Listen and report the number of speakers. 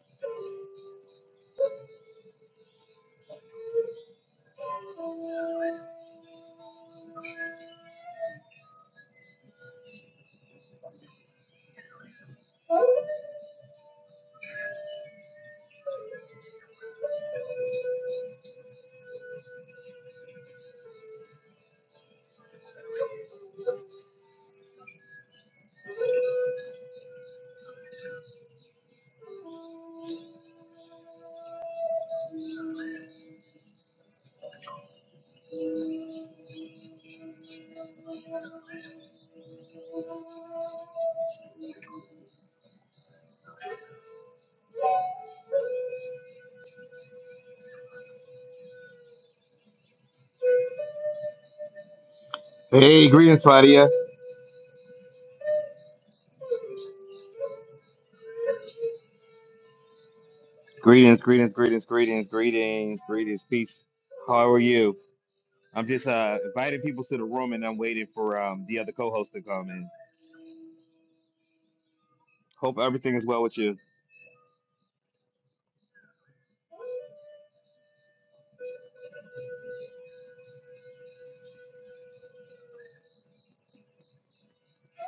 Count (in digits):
1